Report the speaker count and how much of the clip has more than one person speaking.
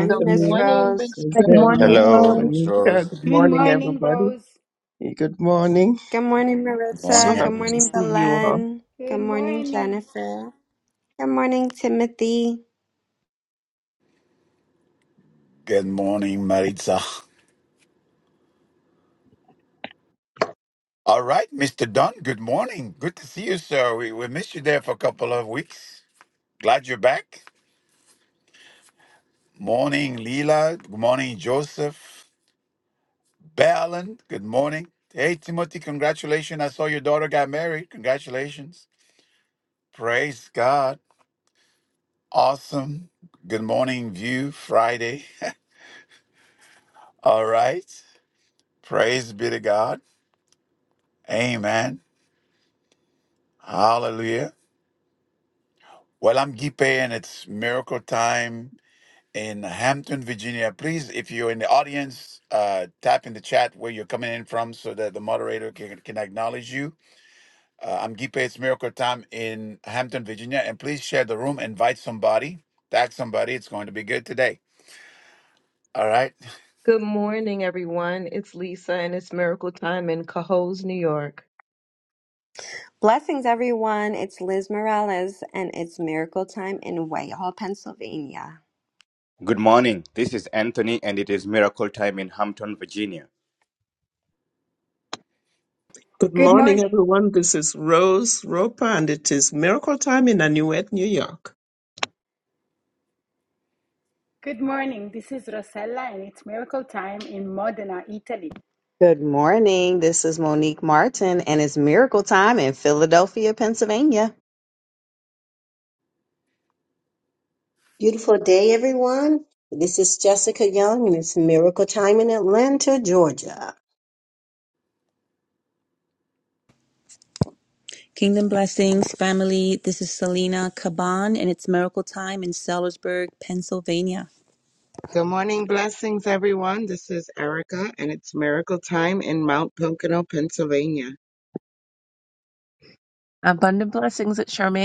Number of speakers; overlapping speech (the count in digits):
11, about 5%